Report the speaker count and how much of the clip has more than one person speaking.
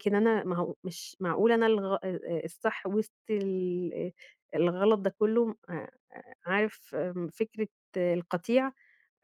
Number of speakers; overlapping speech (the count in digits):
1, no overlap